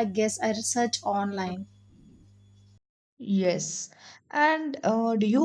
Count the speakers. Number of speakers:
two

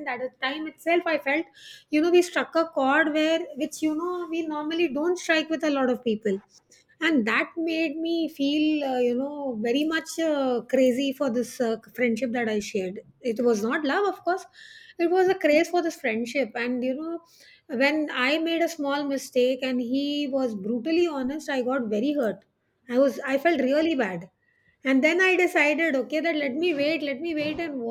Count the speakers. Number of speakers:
one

